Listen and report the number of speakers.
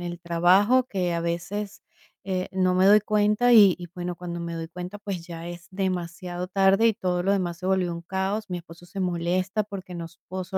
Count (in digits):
1